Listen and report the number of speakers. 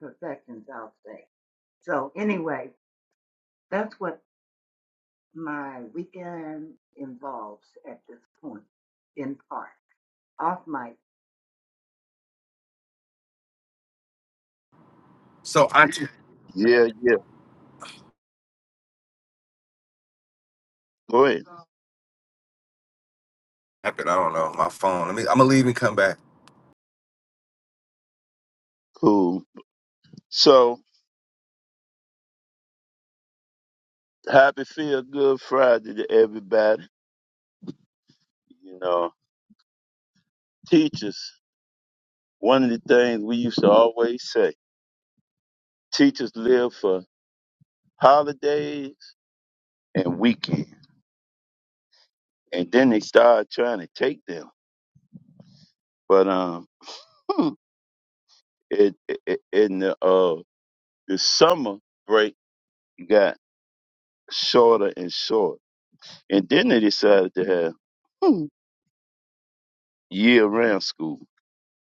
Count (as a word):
three